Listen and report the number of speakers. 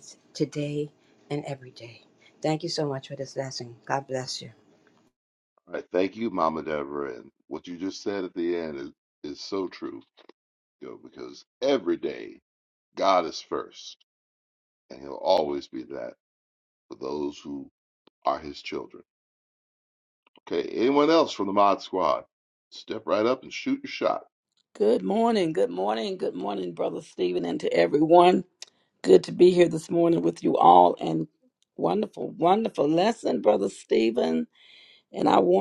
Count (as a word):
three